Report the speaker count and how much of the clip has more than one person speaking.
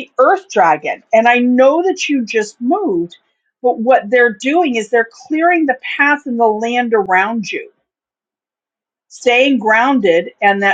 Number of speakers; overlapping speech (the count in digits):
1, no overlap